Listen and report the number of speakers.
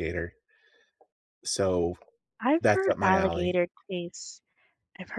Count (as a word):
two